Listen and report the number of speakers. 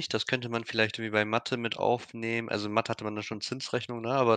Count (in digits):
1